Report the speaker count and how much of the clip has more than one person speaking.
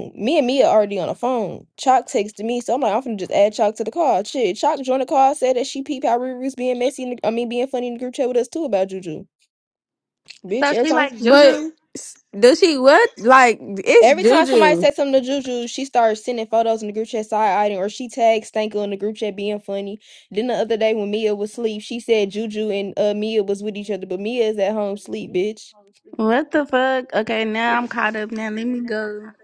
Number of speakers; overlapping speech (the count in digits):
3, about 6%